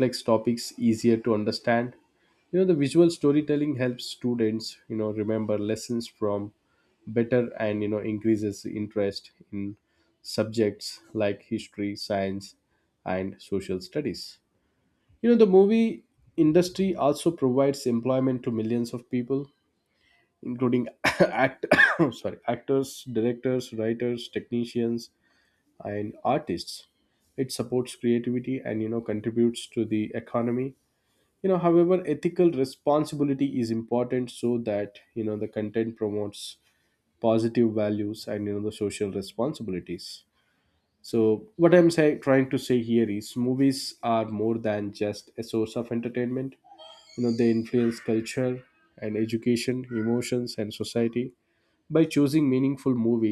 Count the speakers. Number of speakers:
1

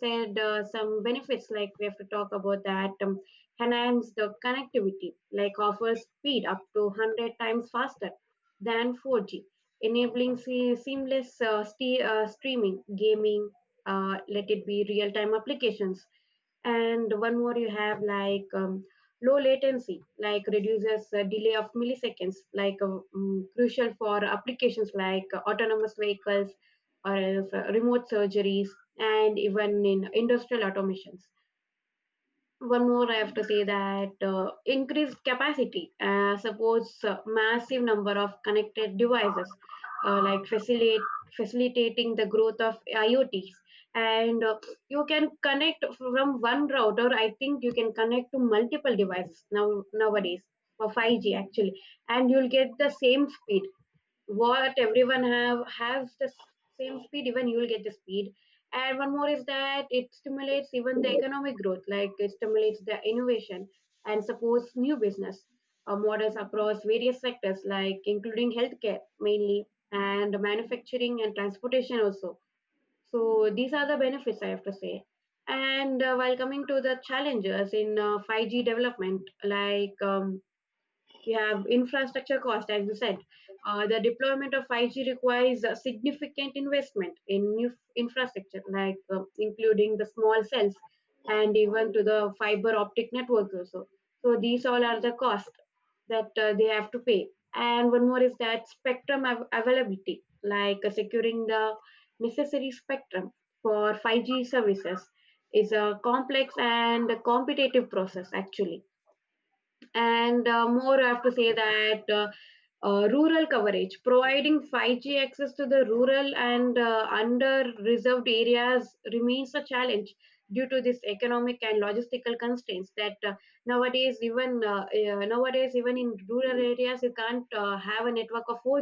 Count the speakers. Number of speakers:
1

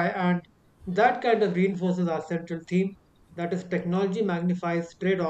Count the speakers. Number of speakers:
1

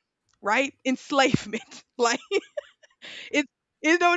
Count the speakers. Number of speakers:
1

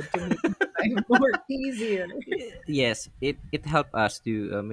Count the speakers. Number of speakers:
2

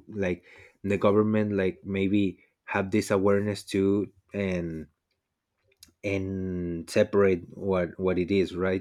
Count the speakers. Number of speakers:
1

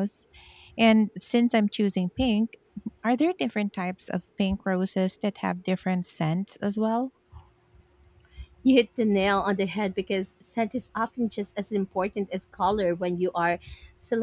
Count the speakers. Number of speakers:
2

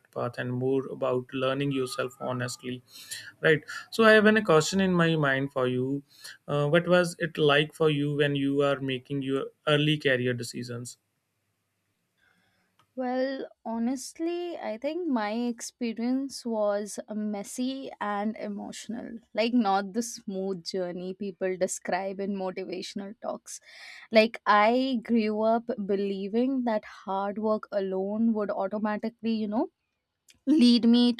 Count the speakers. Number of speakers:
2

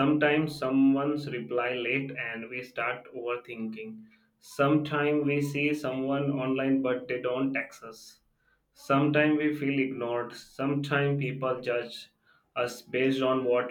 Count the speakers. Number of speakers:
1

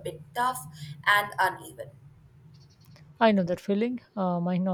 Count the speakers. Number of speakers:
2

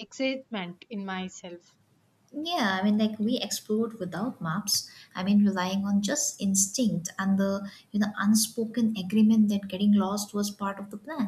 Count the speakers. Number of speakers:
2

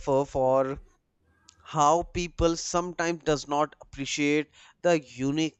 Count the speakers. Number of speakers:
1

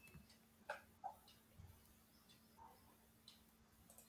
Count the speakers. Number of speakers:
0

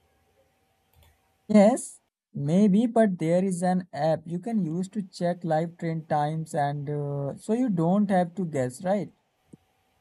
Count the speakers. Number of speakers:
1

